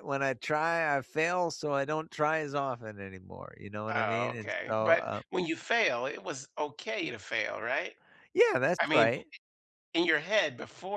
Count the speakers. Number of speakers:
two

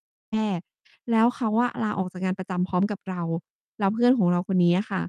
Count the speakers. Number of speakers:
one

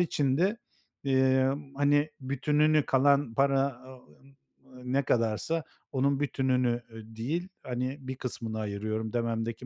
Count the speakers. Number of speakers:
one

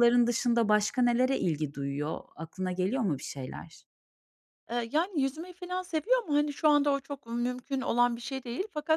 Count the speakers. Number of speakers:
two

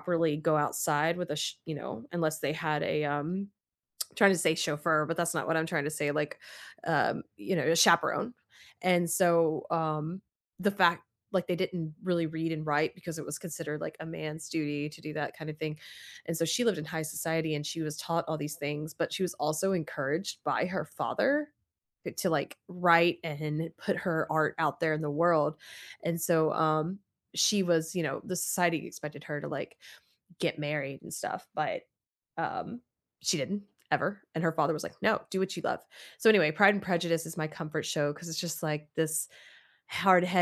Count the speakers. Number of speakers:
one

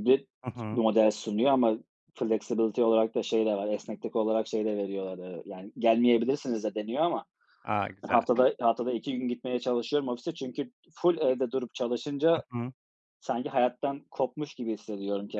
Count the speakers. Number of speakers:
two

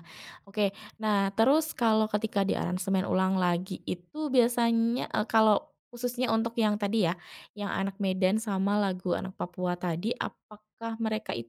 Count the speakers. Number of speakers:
one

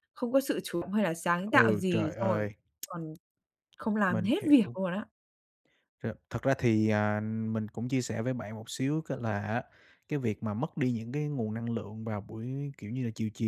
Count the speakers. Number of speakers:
two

